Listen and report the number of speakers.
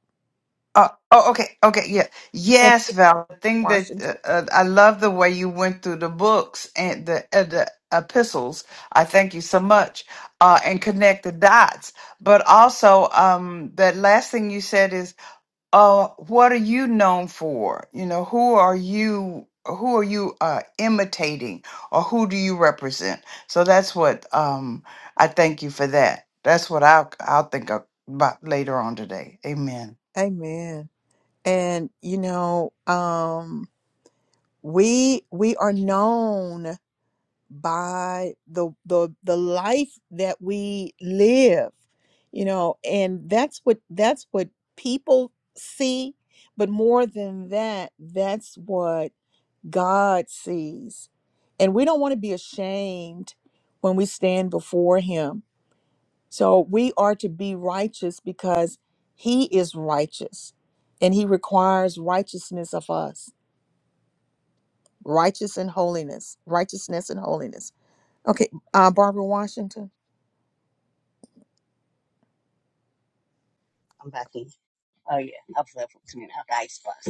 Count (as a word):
three